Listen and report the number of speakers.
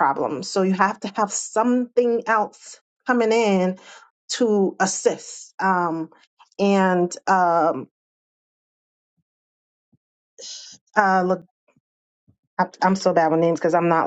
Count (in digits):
1